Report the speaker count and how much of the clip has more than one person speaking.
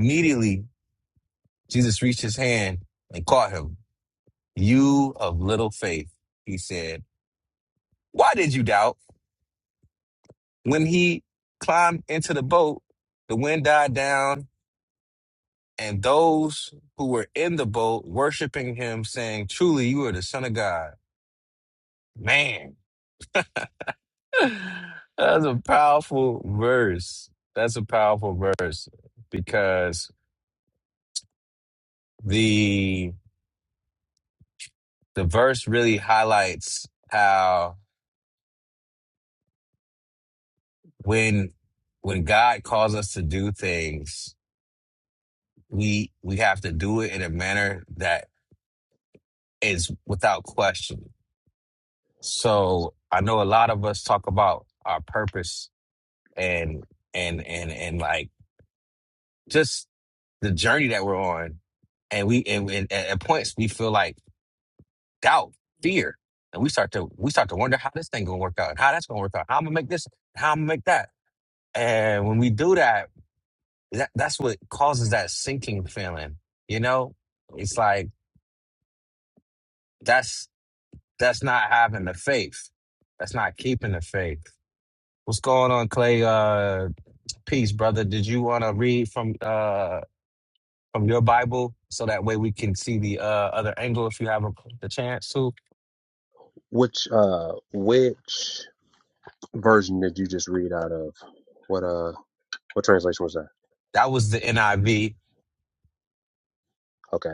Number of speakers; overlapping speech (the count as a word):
two, no overlap